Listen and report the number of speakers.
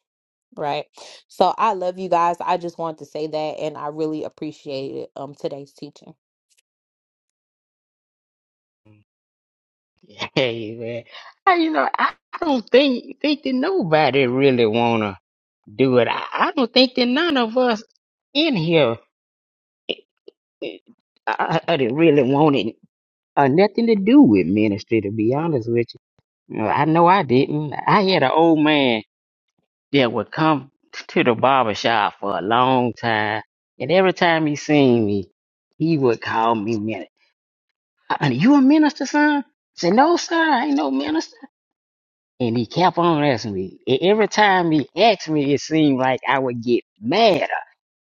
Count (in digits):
2